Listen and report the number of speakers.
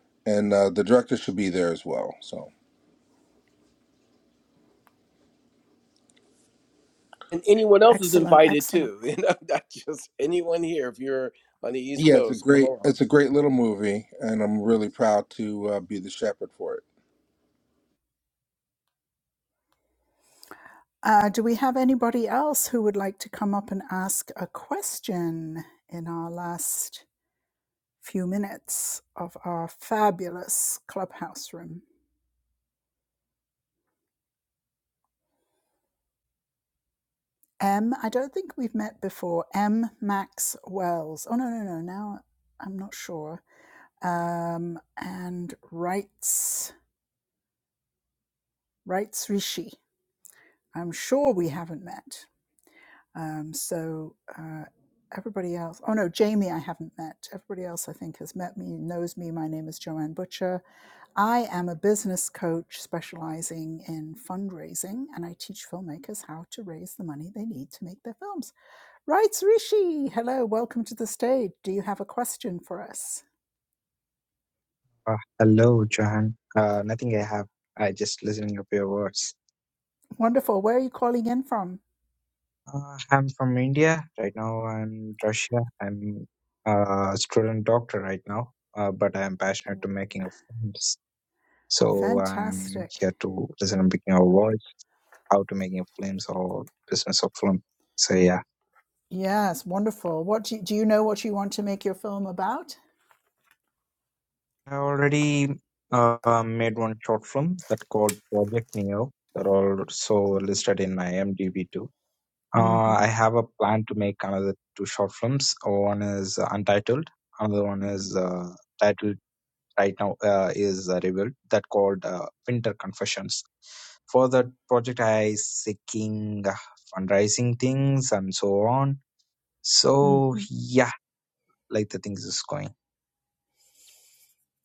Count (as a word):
four